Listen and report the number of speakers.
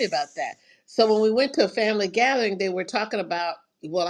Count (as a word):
one